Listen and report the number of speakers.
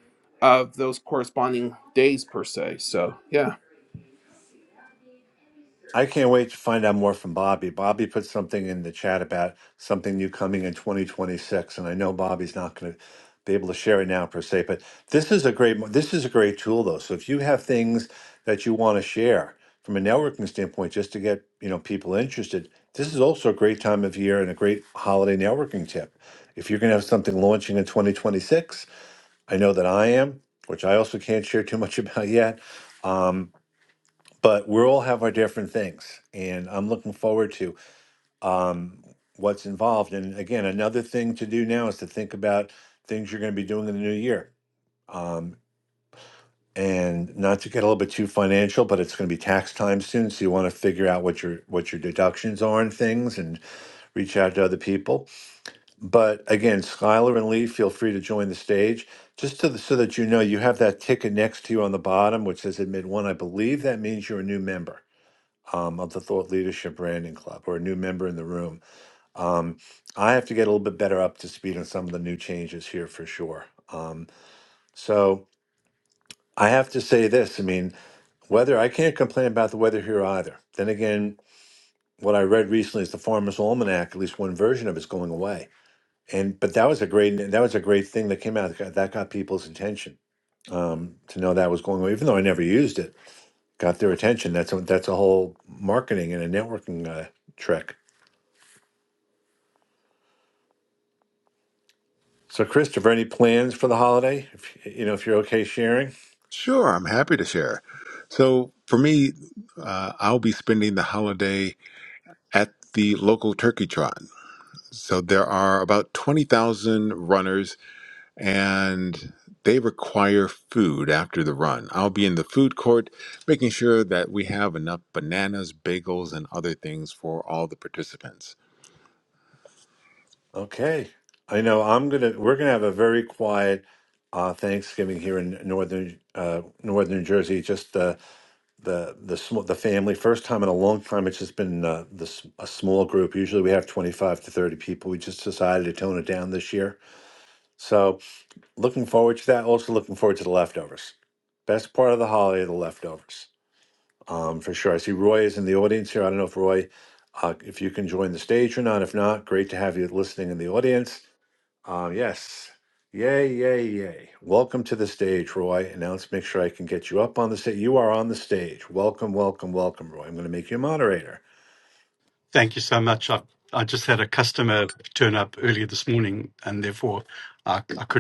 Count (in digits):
4